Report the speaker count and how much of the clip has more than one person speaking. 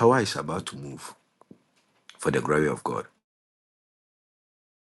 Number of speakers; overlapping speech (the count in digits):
1, no overlap